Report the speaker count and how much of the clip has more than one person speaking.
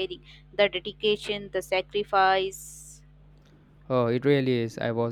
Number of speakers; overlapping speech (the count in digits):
2, no overlap